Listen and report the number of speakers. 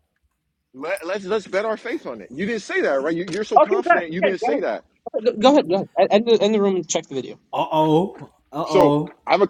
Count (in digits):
3